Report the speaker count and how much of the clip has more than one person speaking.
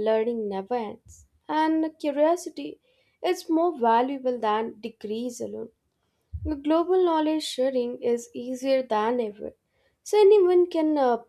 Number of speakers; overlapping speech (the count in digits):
1, no overlap